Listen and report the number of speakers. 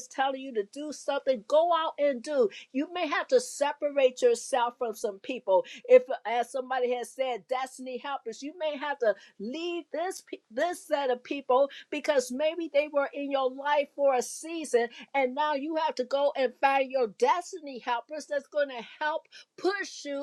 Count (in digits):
1